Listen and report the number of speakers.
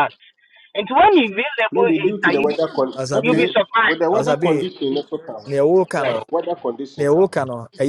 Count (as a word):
three